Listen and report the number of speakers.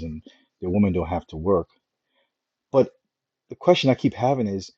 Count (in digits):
1